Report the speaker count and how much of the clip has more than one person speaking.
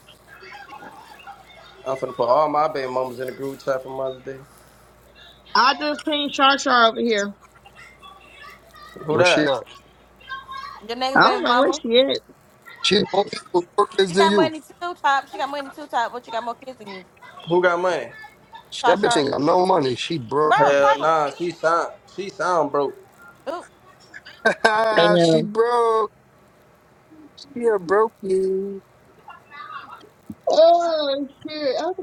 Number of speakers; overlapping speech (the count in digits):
4, about 9%